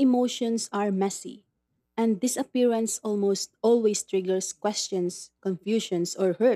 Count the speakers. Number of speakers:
1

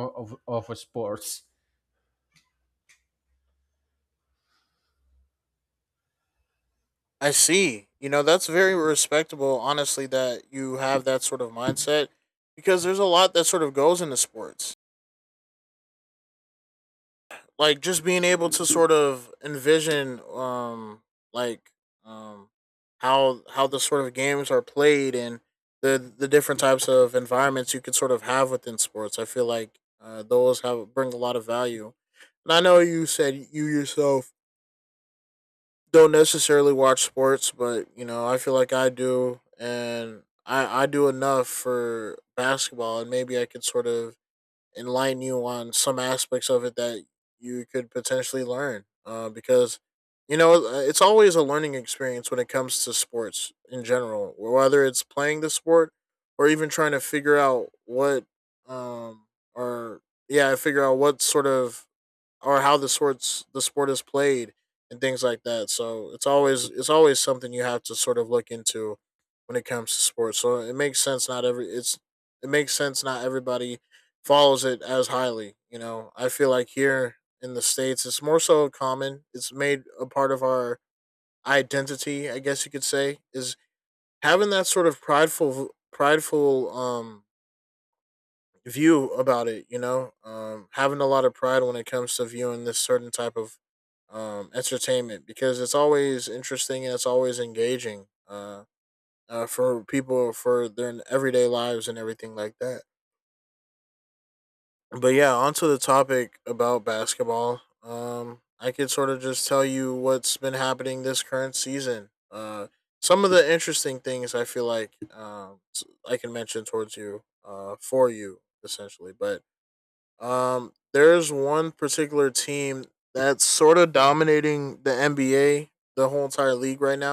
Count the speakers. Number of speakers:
2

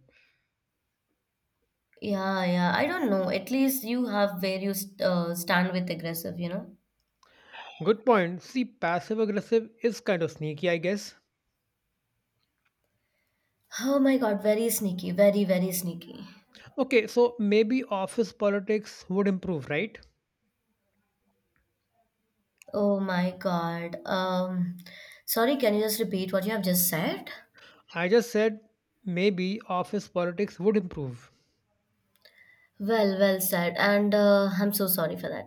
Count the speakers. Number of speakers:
2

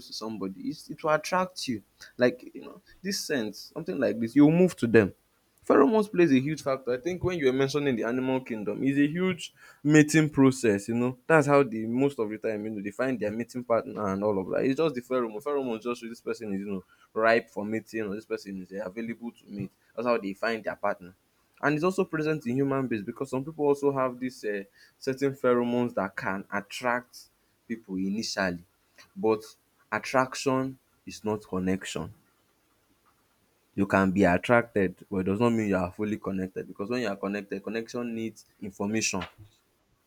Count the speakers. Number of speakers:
1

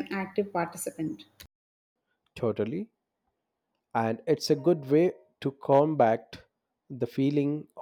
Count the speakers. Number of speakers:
2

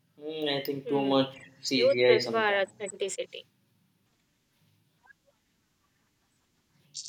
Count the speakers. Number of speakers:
2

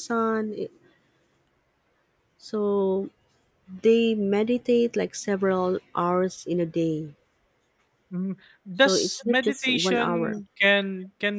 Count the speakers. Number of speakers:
2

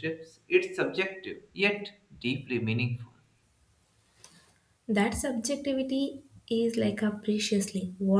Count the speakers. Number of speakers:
2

